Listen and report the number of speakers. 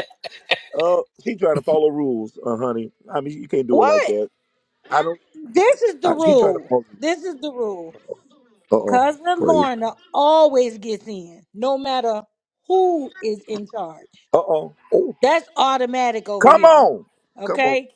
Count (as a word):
two